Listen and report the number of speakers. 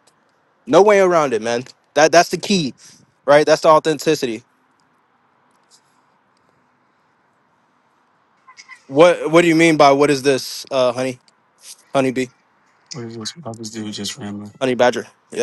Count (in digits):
2